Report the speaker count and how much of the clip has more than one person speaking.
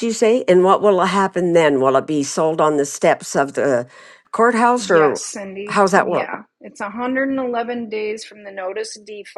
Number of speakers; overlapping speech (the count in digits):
2, about 10%